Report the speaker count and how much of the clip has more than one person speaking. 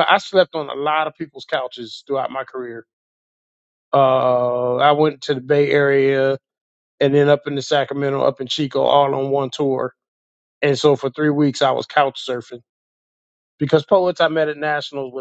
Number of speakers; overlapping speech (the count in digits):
1, no overlap